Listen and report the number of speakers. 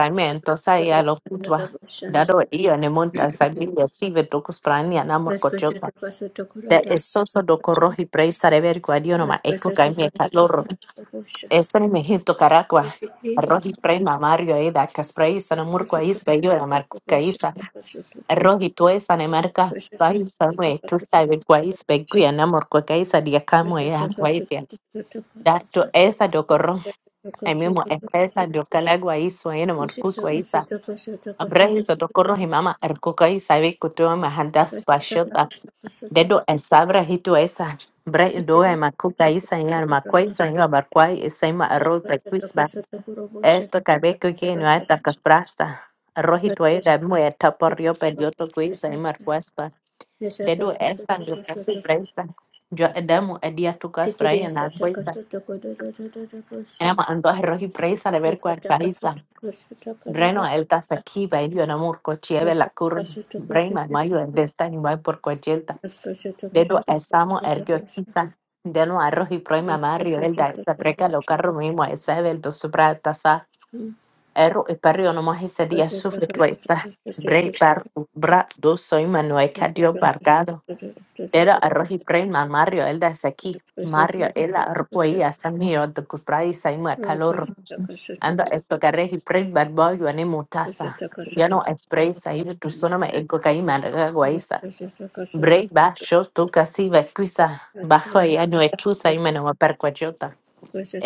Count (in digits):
2